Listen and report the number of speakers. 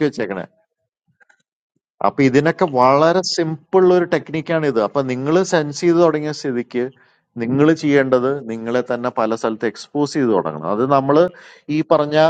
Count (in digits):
1